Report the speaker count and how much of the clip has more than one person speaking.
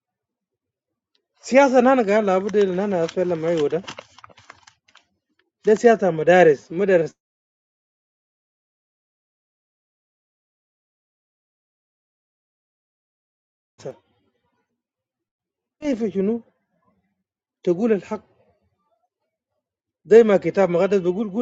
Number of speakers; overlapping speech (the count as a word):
one, no overlap